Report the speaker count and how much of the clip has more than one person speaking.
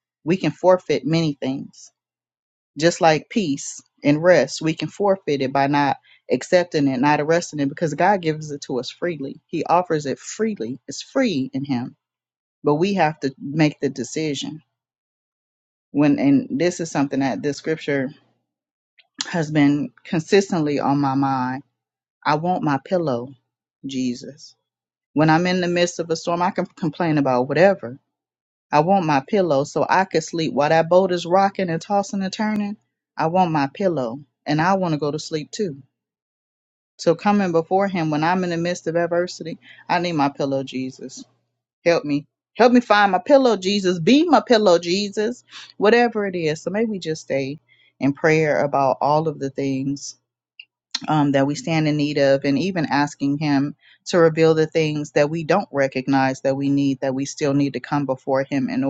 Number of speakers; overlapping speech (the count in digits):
1, no overlap